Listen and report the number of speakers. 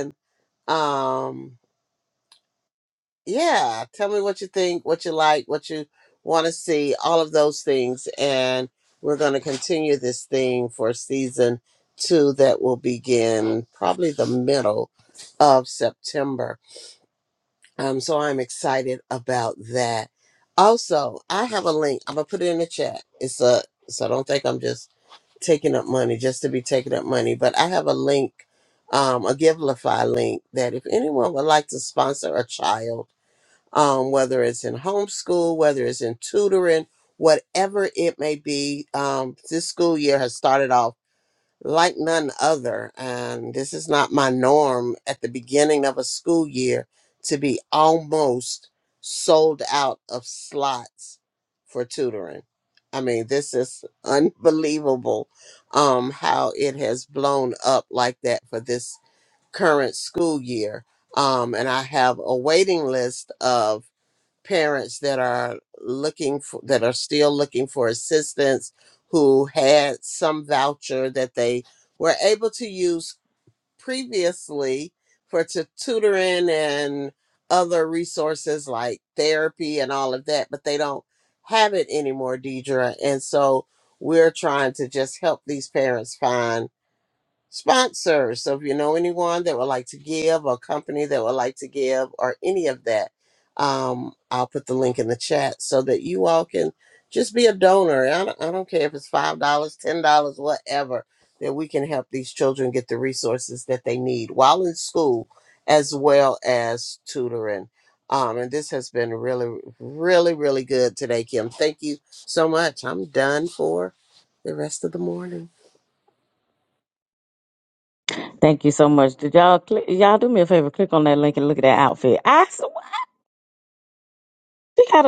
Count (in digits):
2